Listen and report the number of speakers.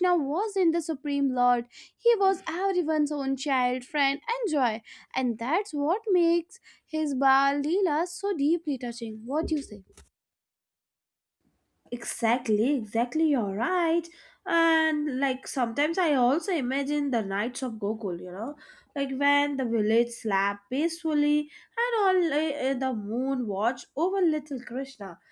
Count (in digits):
2